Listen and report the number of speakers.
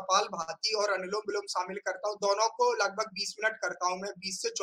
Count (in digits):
1